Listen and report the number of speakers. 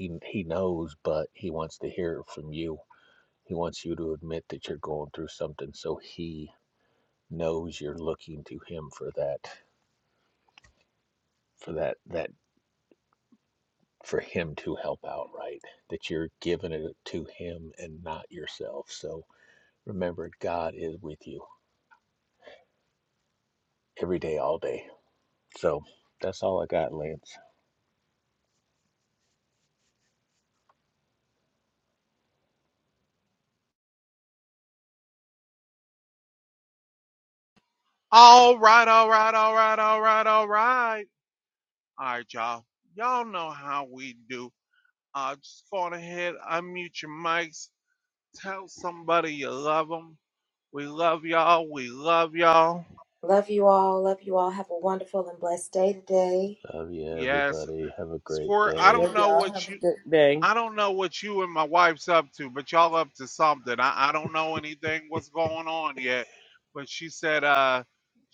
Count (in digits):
4